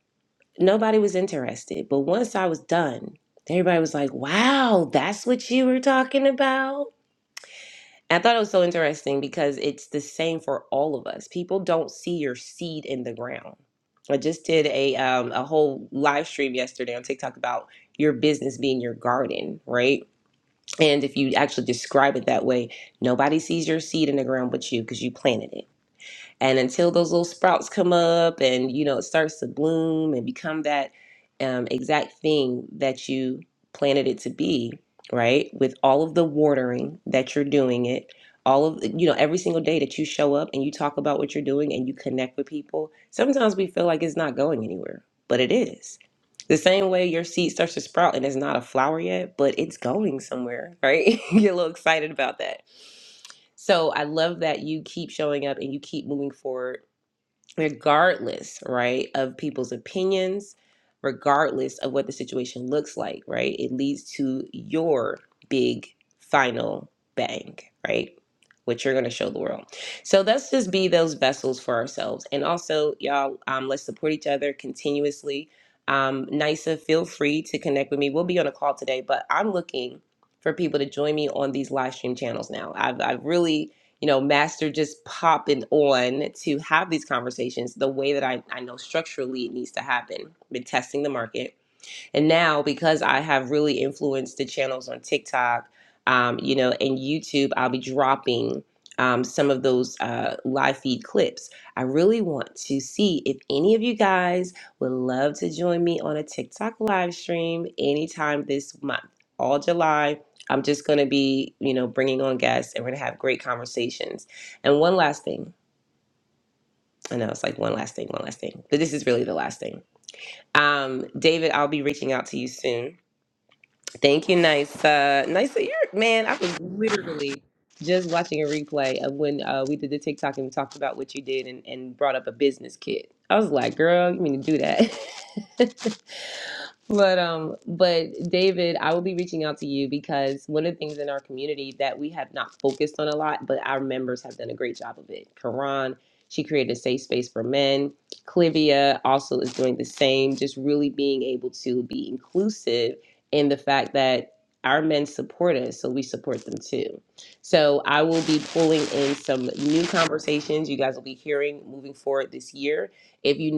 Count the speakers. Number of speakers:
1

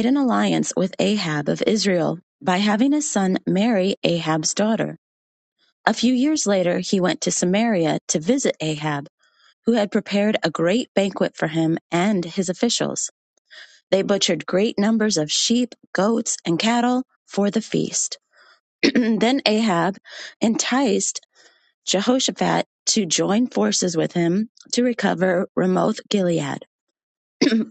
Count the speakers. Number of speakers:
1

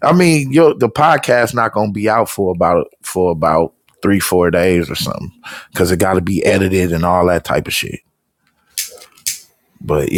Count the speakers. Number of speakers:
1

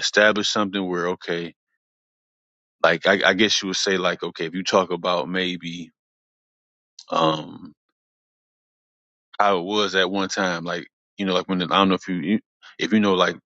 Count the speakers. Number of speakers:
1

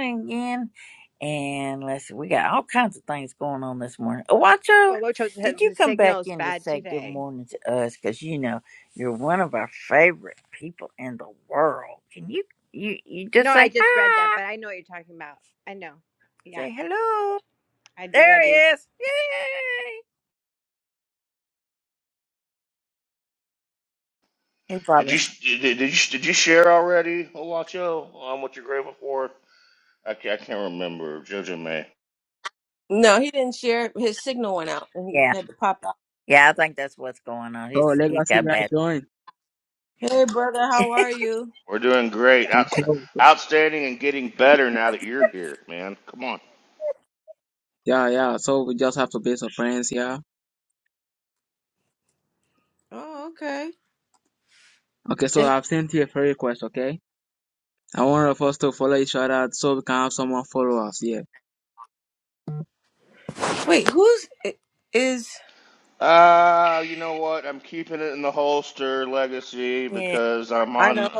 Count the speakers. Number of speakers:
5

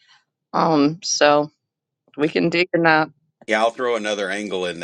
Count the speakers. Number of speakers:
2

